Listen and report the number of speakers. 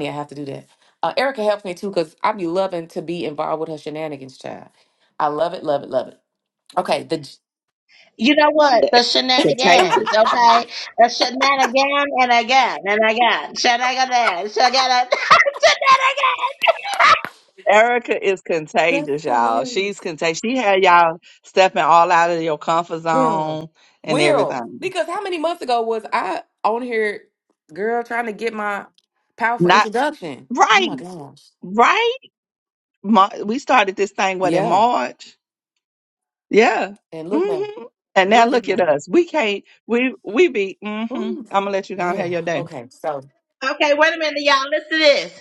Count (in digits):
3